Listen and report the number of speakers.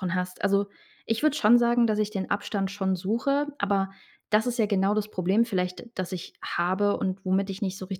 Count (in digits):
1